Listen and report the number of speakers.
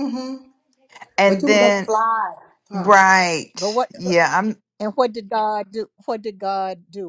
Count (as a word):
three